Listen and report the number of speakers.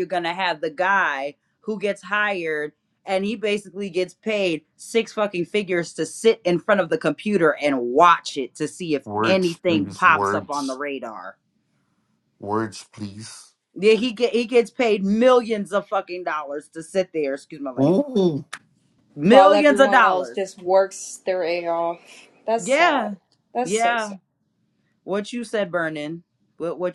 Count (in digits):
3